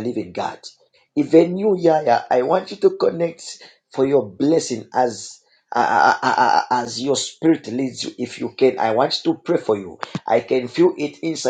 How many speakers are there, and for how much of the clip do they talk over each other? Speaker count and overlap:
1, no overlap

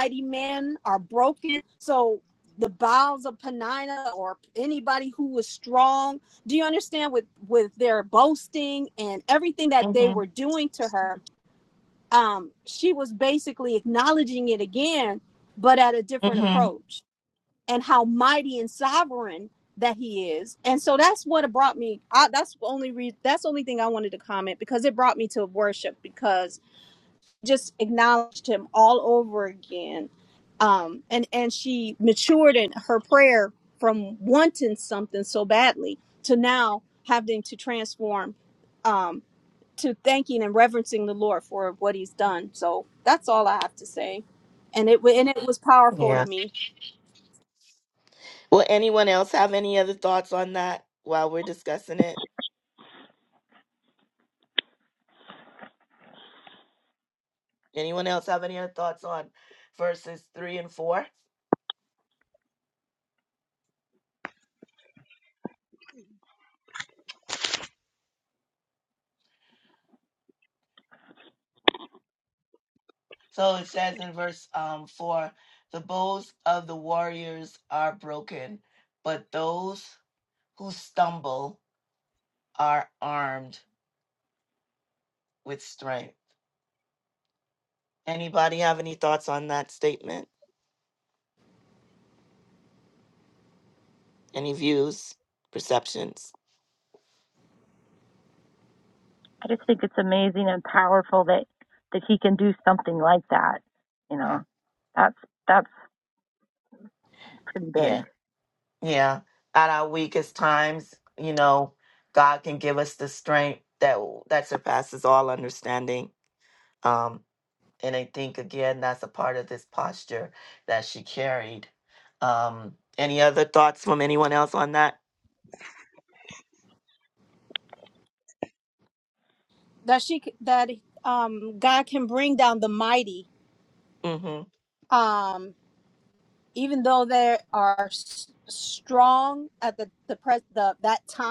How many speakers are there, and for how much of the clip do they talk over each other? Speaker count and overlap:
3, about 1%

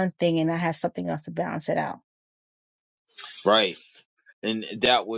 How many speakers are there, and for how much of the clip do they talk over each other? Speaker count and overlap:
2, no overlap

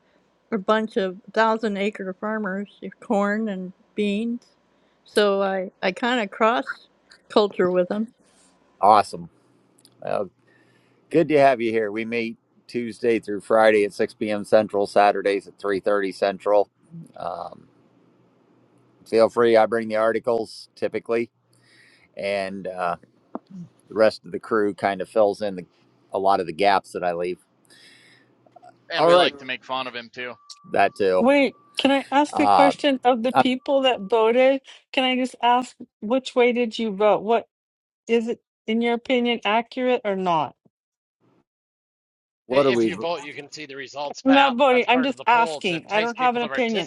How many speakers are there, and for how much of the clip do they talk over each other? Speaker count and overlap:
5, about 9%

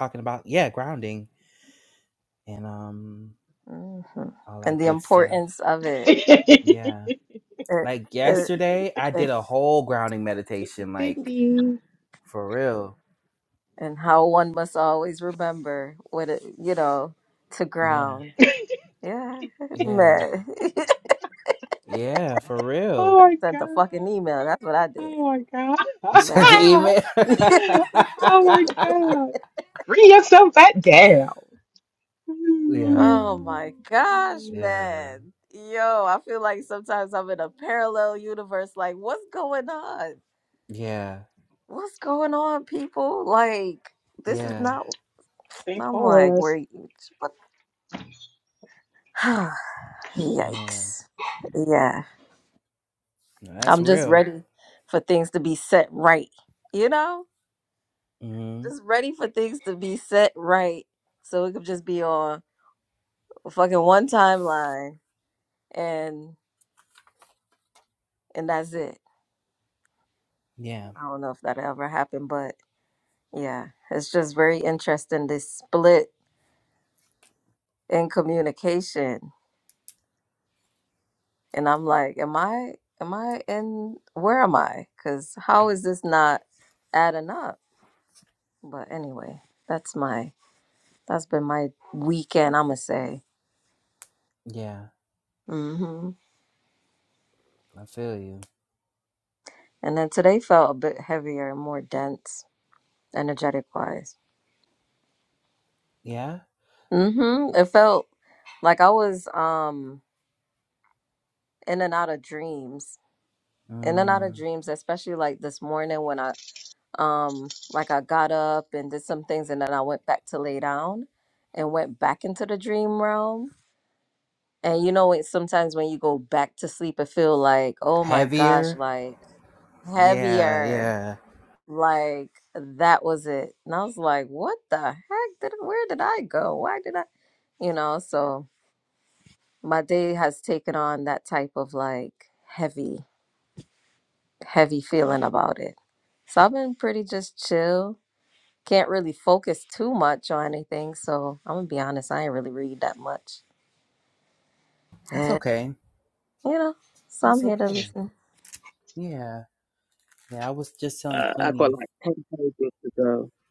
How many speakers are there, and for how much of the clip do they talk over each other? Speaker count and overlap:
4, about 6%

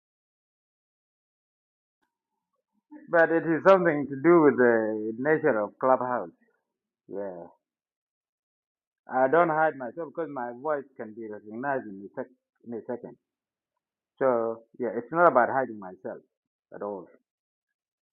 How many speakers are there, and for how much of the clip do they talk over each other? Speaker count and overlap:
1, no overlap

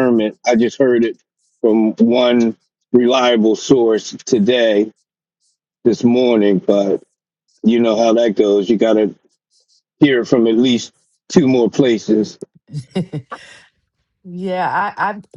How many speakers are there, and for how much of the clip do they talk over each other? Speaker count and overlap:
2, no overlap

